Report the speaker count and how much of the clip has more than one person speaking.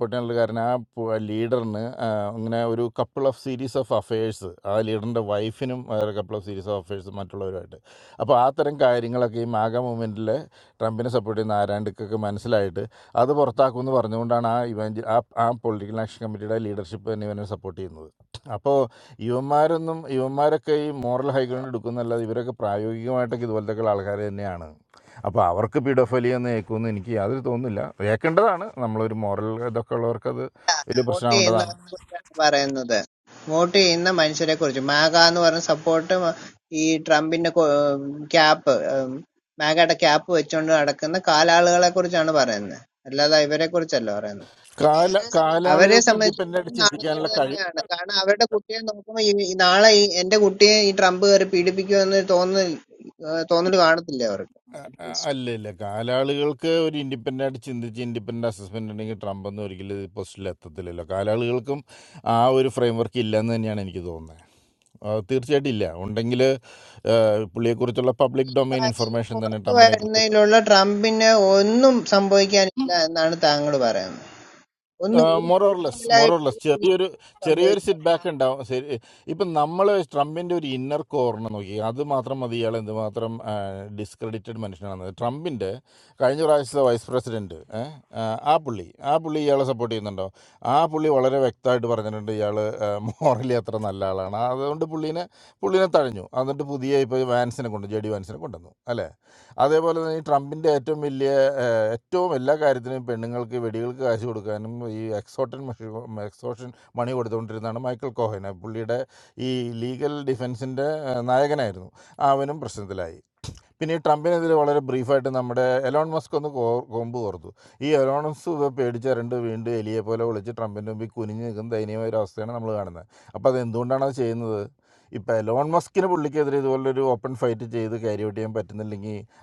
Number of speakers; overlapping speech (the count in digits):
2, about 4%